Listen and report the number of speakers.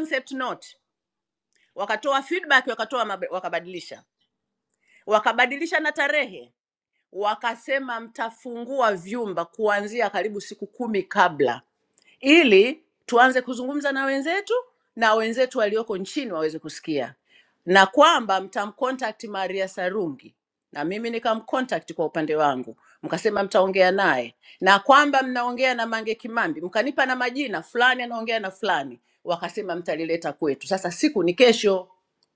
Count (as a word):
one